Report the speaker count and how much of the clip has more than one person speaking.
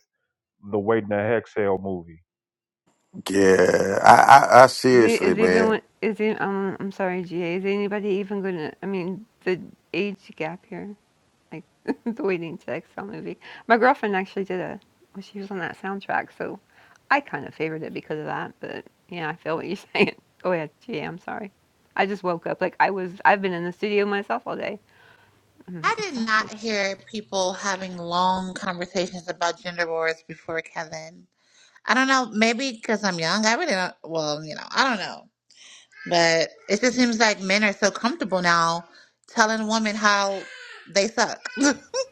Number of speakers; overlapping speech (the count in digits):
4, about 4%